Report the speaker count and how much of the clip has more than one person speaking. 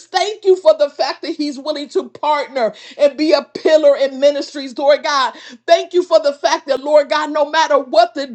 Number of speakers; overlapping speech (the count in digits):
1, no overlap